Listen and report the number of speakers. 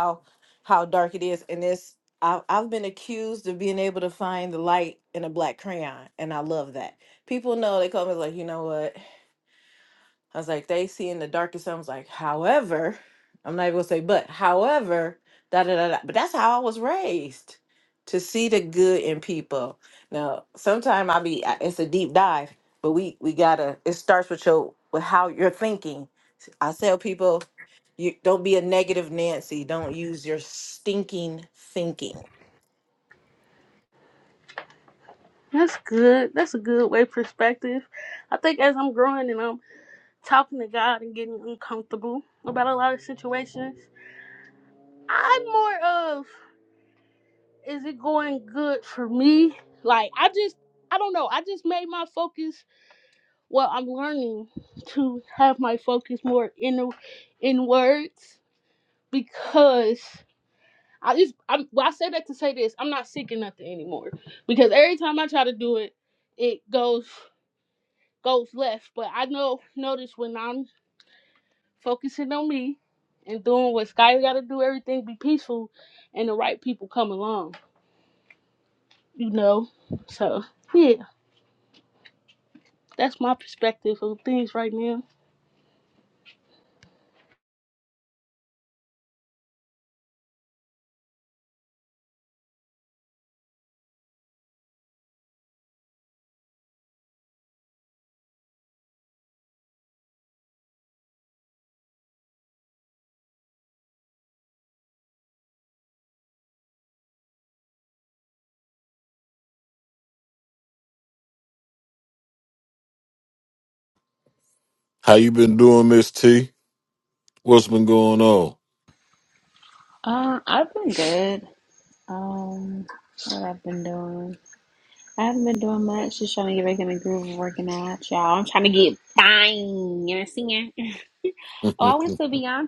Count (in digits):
4